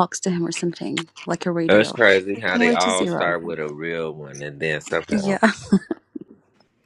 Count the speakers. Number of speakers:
2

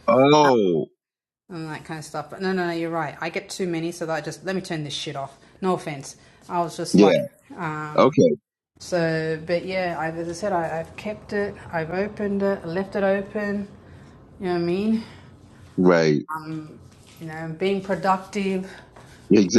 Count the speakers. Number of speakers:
2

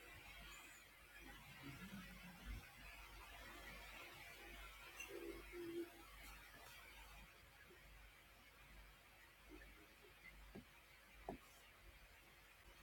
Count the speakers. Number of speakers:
0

